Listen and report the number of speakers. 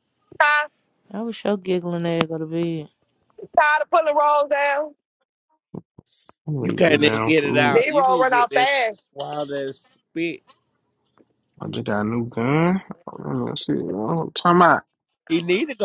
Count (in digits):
4